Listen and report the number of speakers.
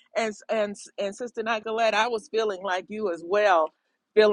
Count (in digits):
1